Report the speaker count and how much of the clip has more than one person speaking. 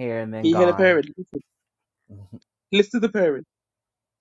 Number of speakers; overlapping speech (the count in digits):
2, about 11%